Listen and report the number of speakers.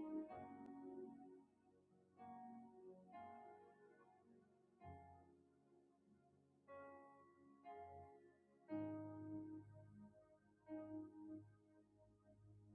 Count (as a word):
zero